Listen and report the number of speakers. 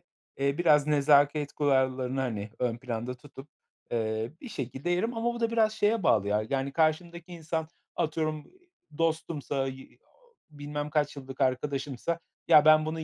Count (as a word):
one